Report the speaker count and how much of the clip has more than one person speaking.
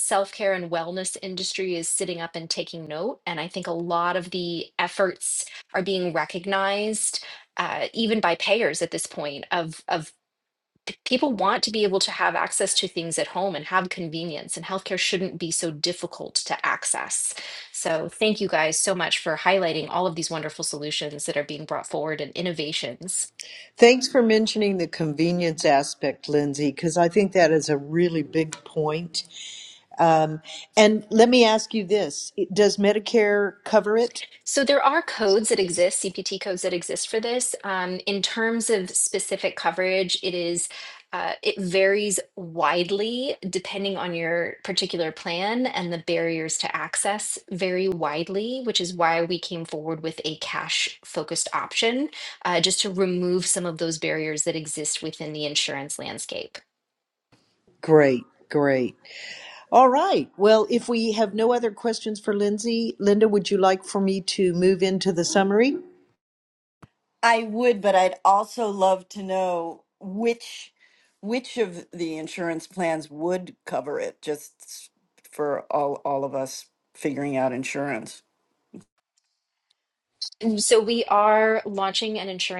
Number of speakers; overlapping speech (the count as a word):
three, no overlap